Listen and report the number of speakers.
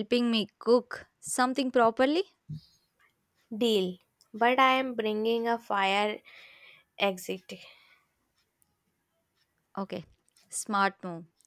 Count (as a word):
two